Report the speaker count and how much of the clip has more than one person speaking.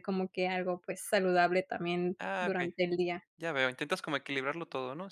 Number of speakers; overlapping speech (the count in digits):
2, about 10%